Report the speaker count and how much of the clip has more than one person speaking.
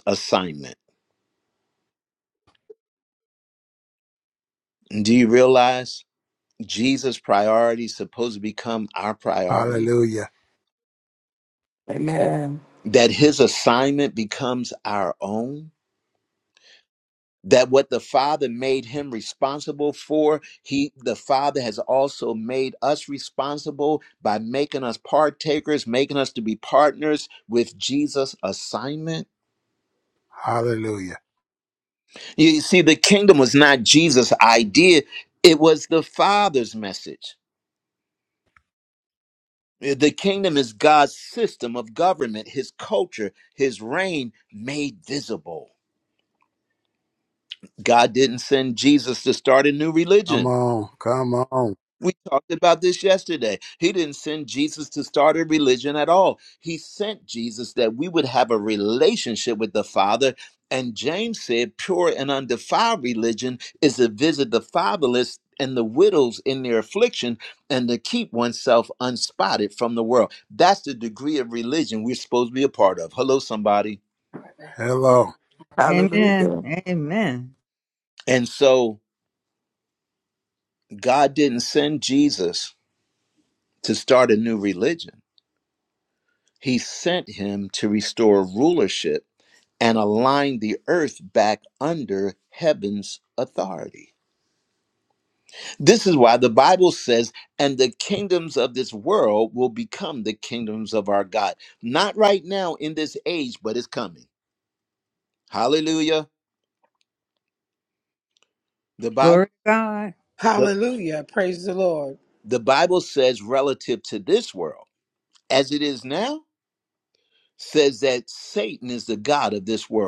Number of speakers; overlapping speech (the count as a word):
five, about 1%